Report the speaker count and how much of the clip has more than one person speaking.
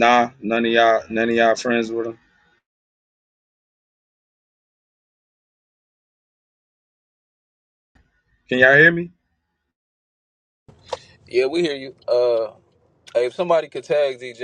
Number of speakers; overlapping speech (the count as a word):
two, no overlap